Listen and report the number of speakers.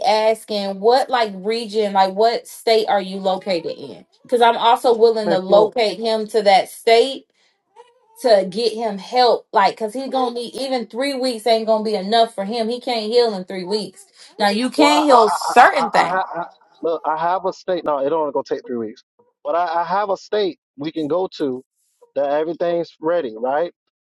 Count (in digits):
2